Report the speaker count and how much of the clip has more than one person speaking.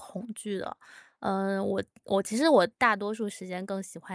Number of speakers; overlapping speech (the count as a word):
one, no overlap